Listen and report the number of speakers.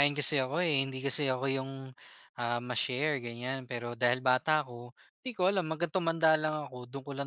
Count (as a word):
one